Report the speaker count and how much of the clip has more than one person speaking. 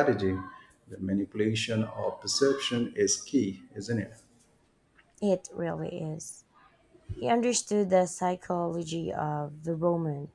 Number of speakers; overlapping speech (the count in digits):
2, no overlap